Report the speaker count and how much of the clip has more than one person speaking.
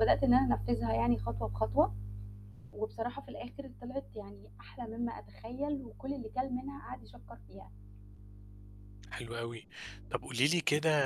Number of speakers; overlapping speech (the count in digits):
2, no overlap